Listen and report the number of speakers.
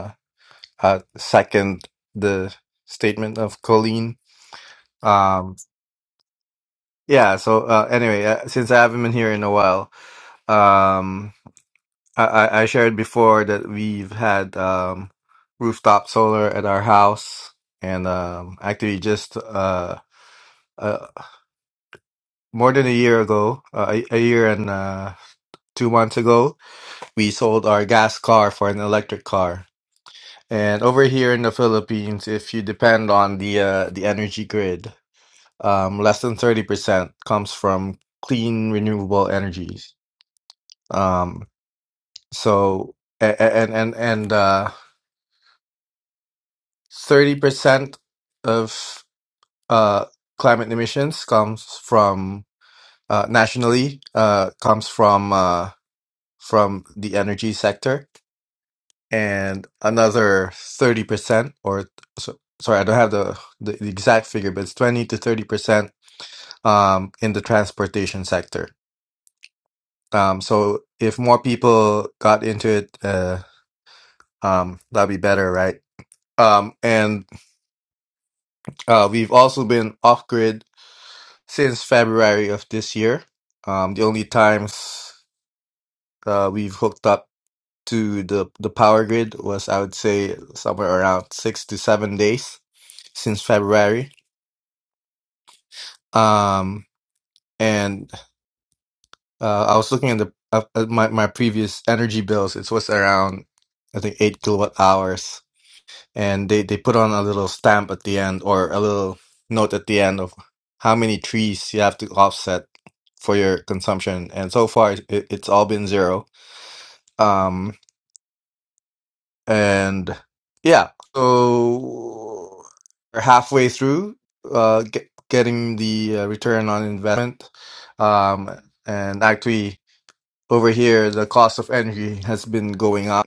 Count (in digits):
1